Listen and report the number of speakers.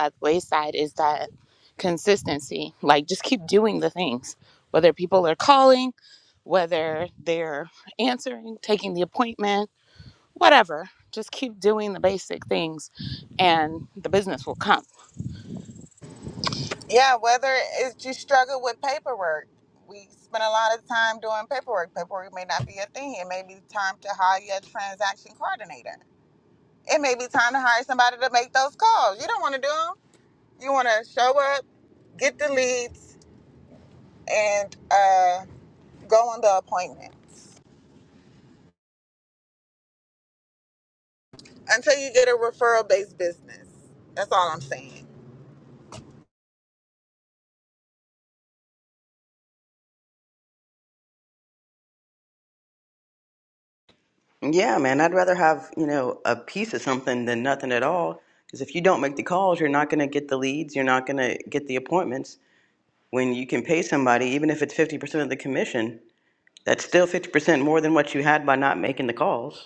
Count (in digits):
3